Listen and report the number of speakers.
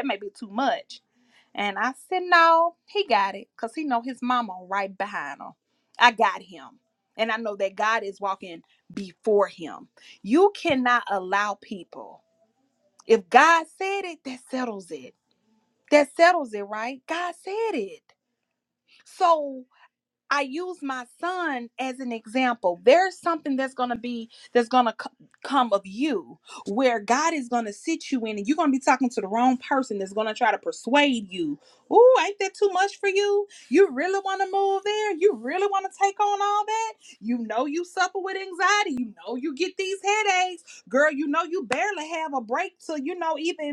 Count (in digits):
1